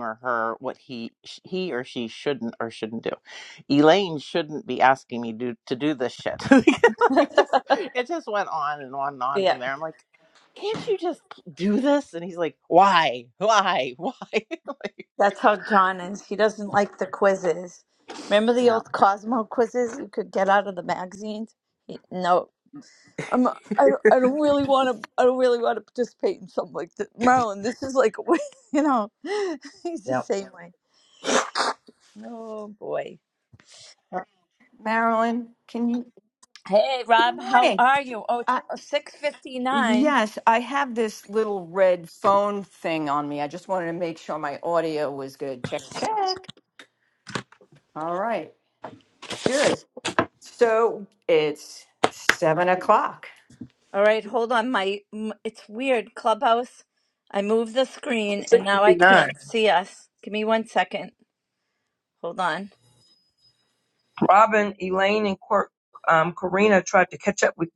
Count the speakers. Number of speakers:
four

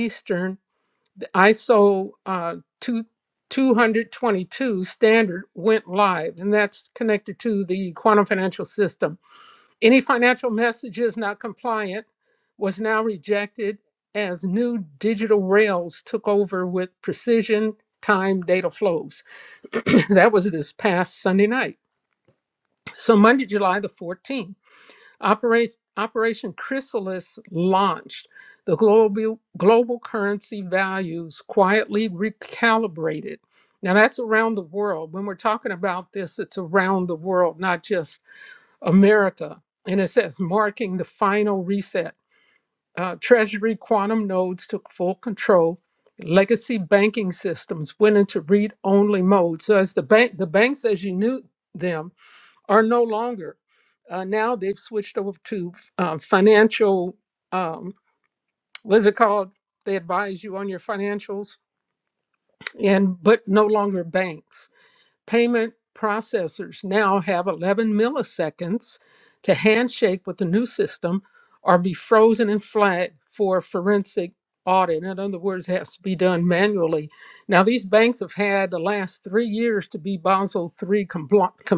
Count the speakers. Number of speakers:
one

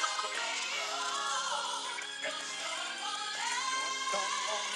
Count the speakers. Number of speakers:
zero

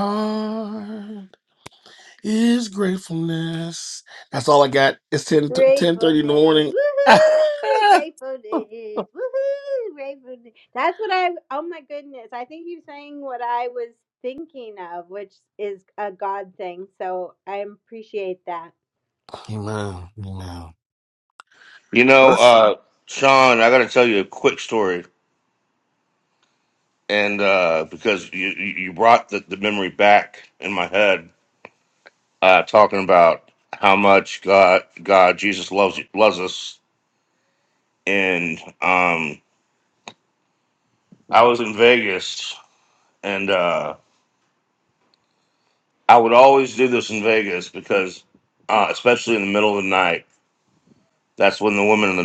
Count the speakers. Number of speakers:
three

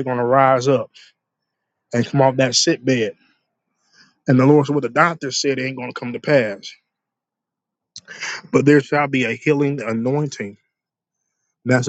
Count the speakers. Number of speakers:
one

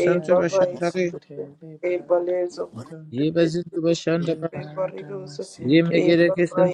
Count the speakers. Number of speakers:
two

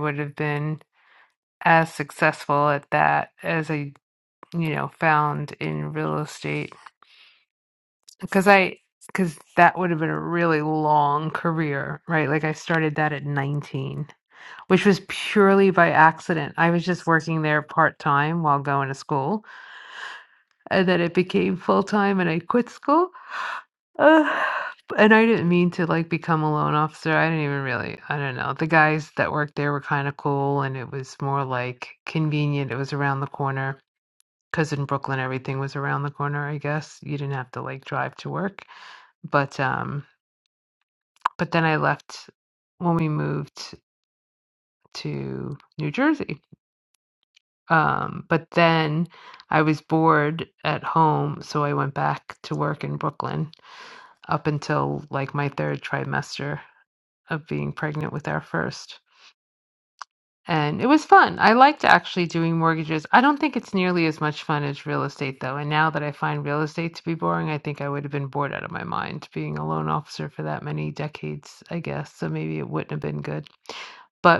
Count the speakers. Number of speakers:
one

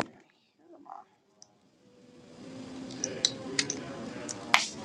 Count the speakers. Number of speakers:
zero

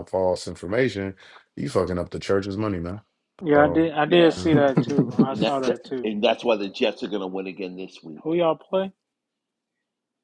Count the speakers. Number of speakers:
three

